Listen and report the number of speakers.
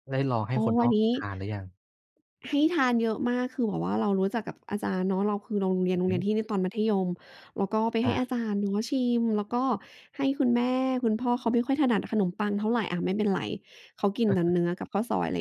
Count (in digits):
2